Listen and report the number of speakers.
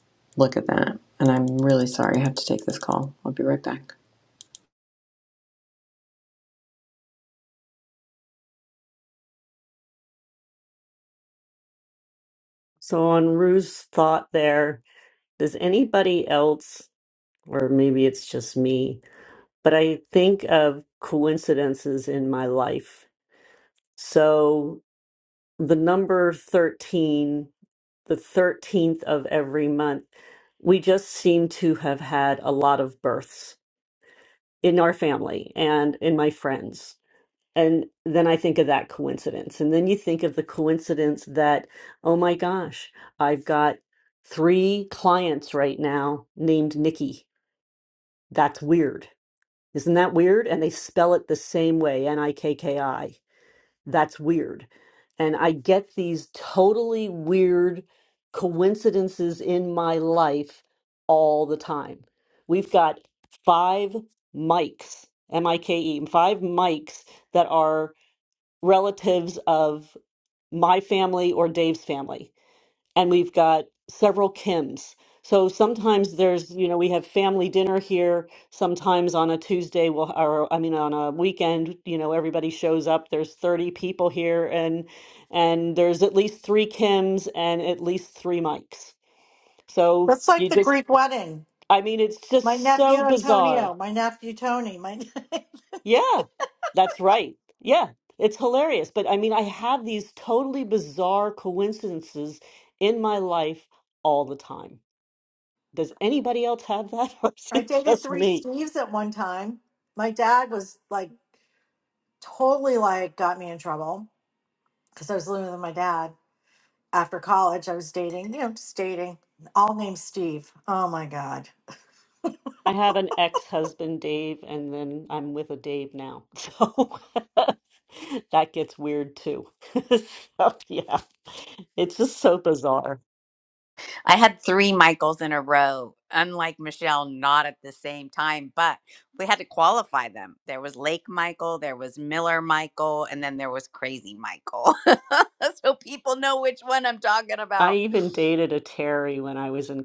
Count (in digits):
4